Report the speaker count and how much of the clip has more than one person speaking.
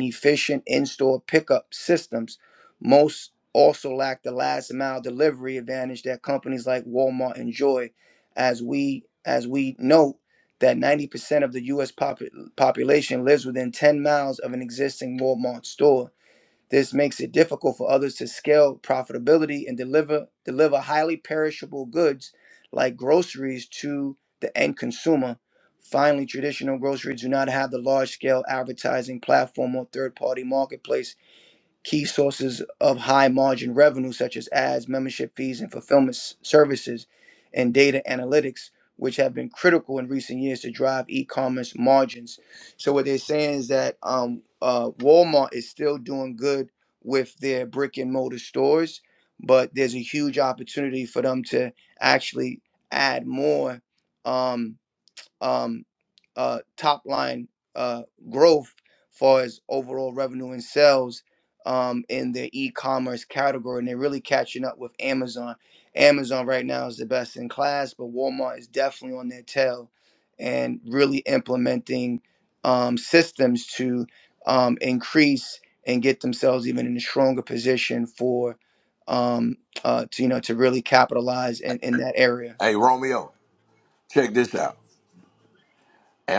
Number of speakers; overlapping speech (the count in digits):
2, no overlap